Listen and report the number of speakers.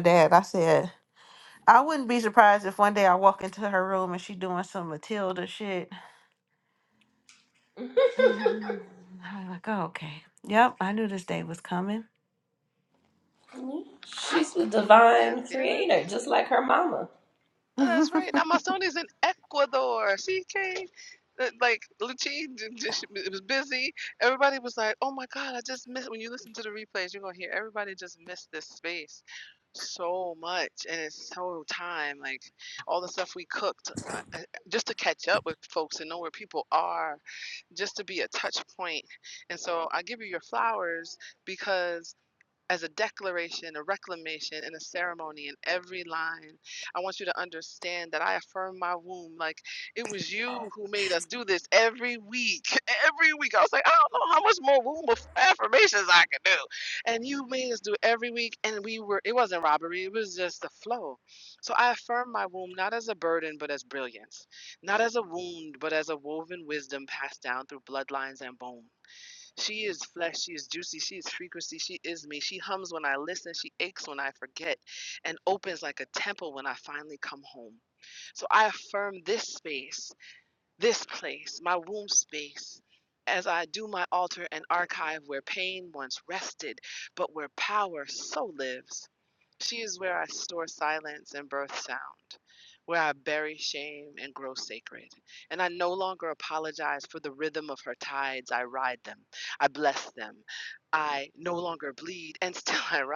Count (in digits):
3